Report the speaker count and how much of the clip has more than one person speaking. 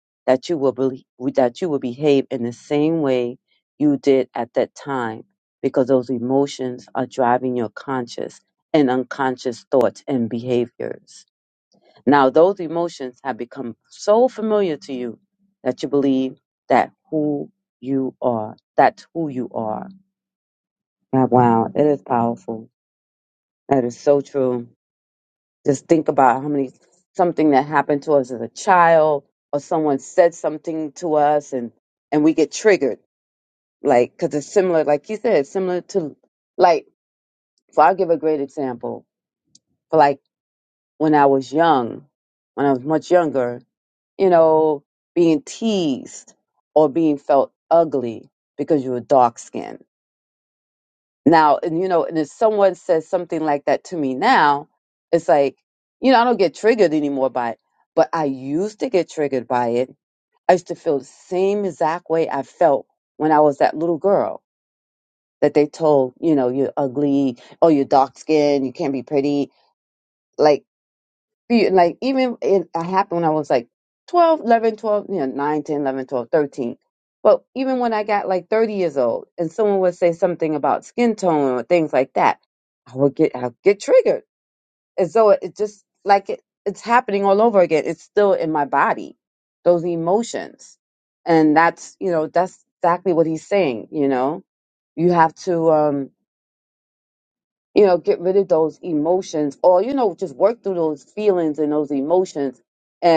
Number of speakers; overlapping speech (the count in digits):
1, no overlap